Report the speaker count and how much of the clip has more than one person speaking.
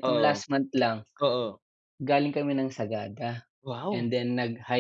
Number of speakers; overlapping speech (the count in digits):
2, about 11%